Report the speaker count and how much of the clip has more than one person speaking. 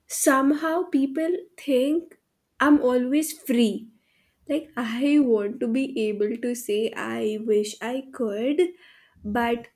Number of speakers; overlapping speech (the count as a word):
one, no overlap